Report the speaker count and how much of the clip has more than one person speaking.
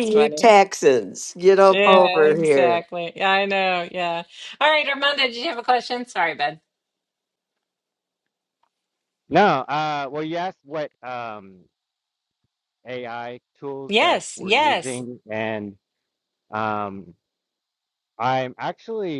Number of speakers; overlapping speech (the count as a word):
three, about 14%